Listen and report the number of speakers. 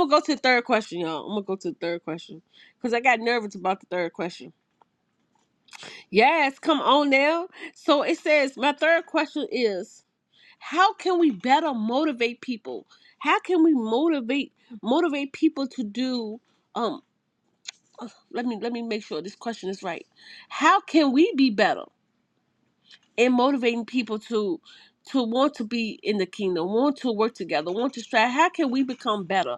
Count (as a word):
one